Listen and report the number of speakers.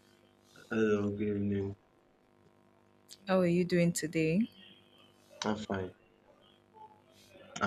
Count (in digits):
2